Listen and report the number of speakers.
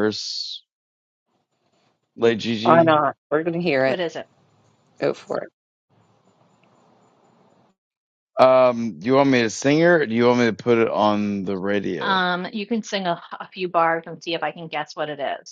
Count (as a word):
three